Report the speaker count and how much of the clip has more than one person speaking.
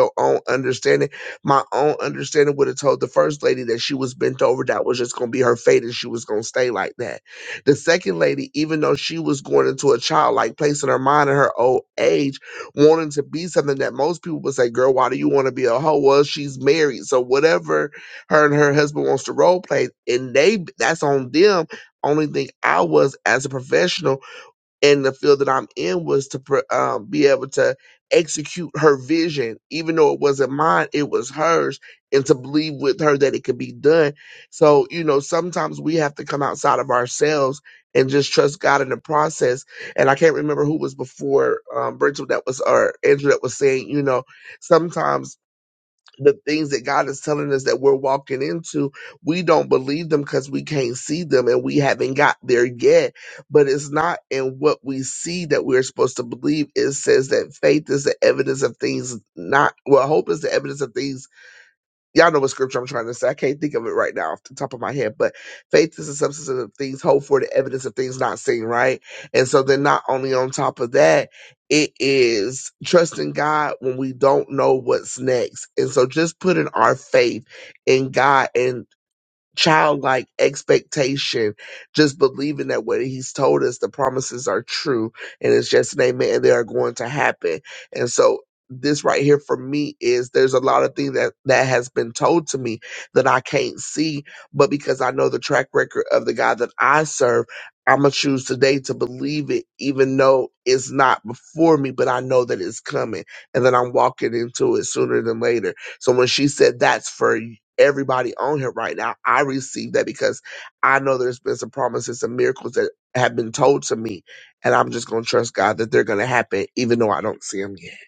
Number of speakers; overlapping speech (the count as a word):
one, no overlap